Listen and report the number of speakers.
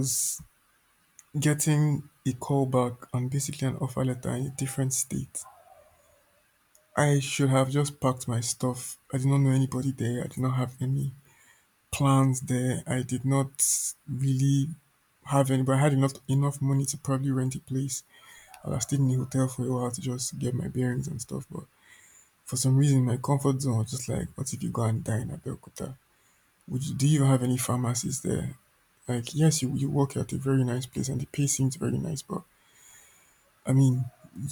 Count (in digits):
1